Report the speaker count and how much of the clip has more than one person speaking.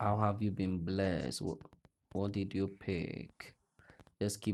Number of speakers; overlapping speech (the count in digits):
1, no overlap